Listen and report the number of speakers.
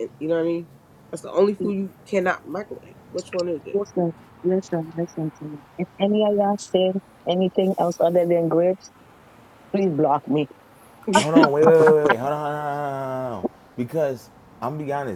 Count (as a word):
three